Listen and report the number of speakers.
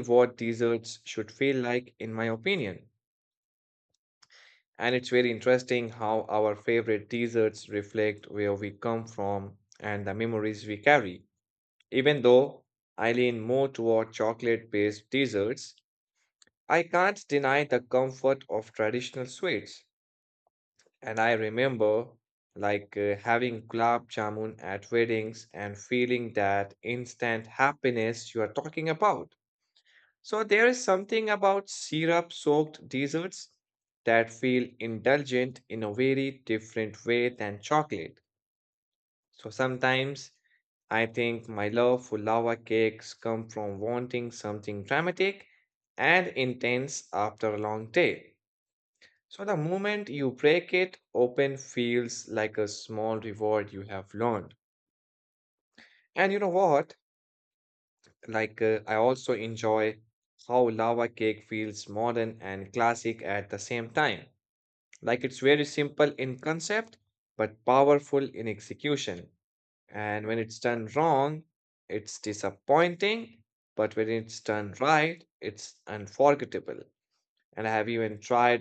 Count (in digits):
1